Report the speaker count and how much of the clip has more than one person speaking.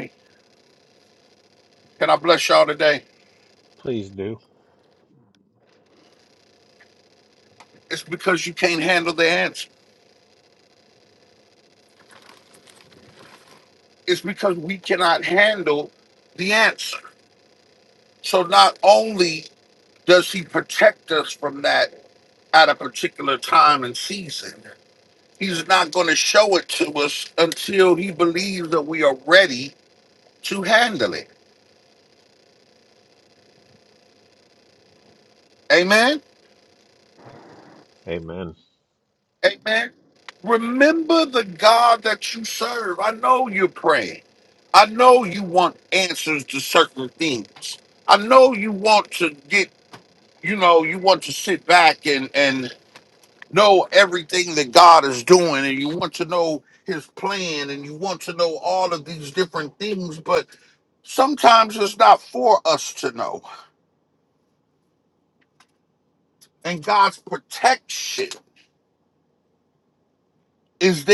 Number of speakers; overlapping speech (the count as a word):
two, no overlap